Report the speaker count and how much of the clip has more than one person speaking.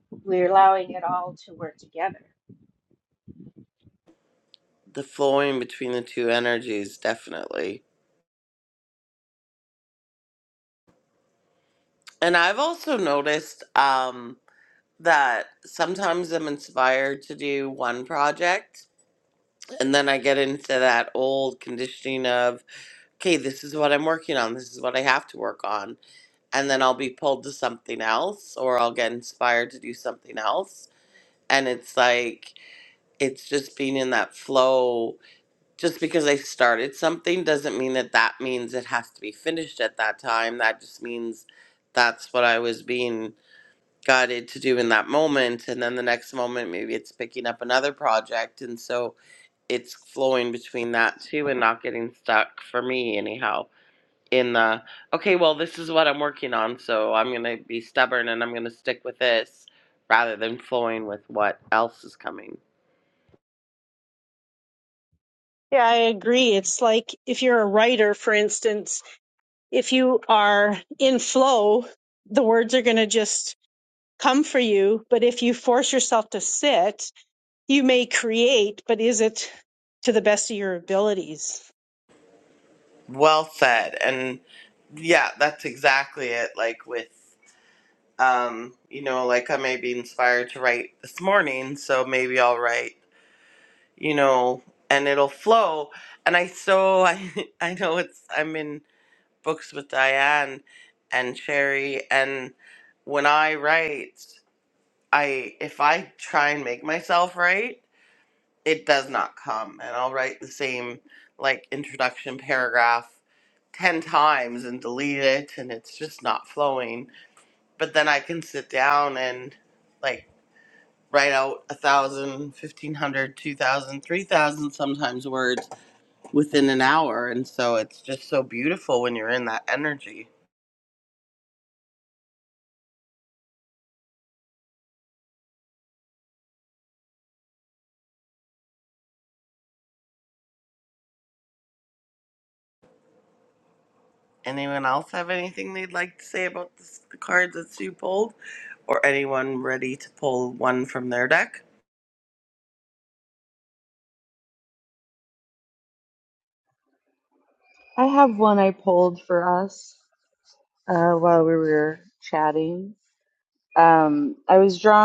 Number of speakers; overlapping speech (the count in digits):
4, no overlap